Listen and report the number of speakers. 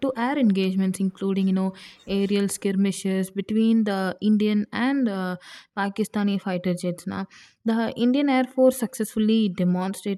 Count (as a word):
one